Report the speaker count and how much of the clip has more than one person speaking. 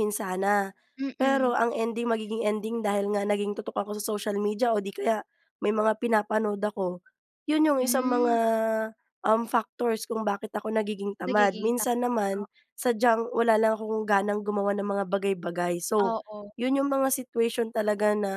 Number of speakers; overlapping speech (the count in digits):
2, about 9%